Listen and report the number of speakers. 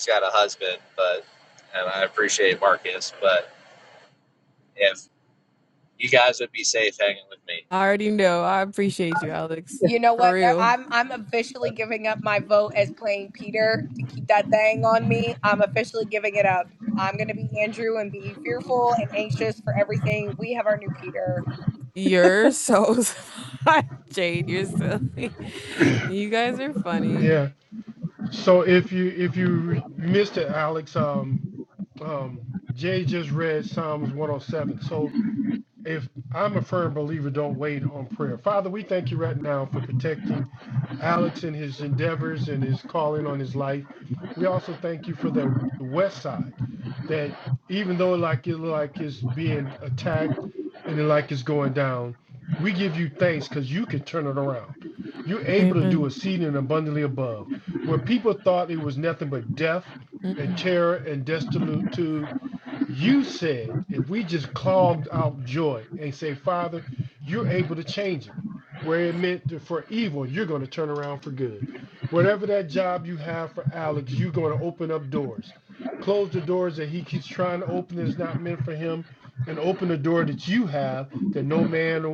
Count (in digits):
4